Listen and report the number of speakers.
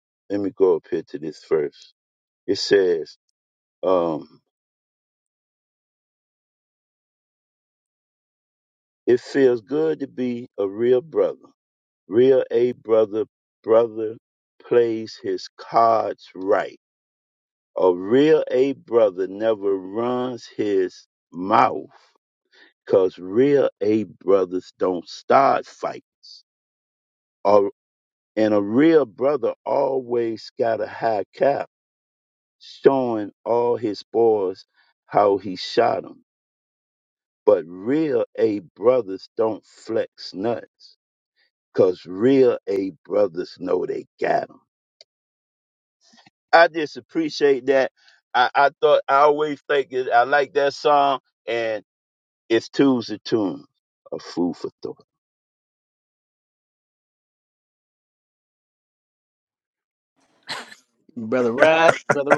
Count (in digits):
2